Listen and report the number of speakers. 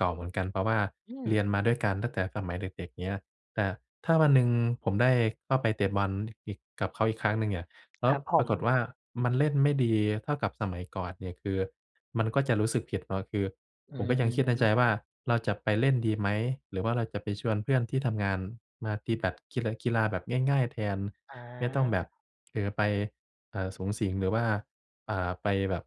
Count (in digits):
2